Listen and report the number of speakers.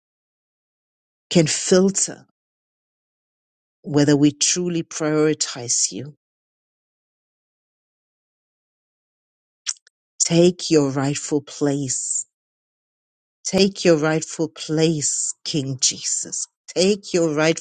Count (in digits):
1